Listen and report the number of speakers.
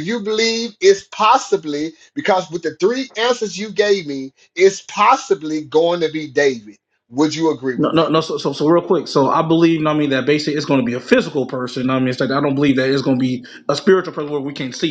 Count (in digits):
2